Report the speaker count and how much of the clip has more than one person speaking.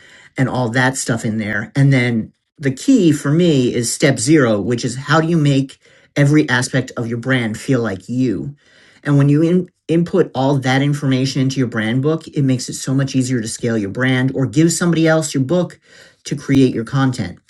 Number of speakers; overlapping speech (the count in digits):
1, no overlap